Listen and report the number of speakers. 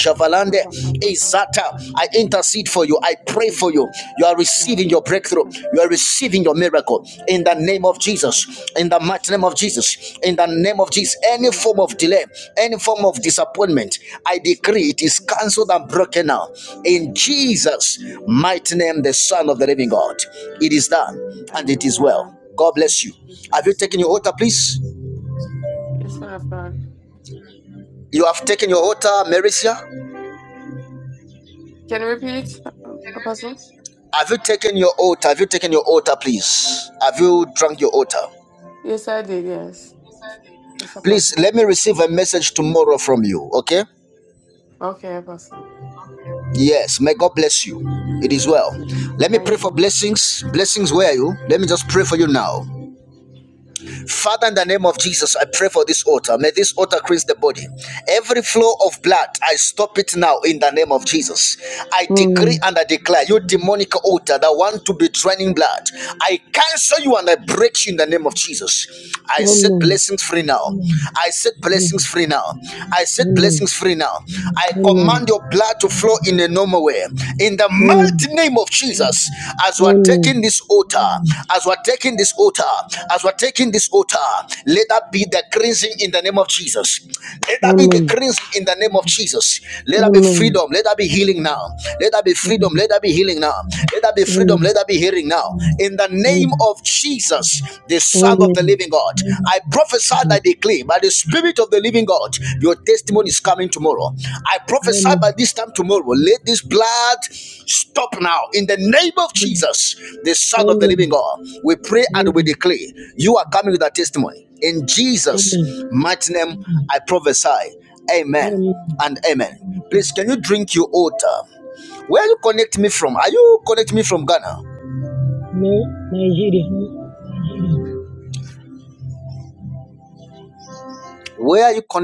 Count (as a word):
three